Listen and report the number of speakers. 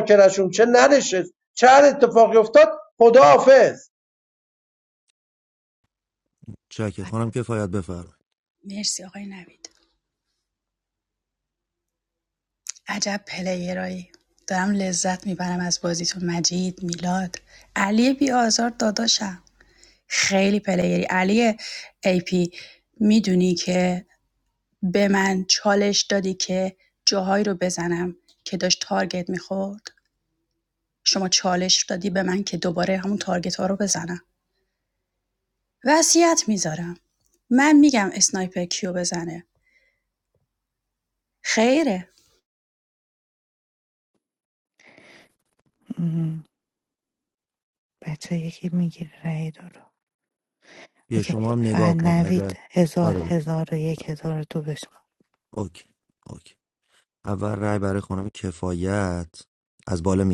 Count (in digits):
4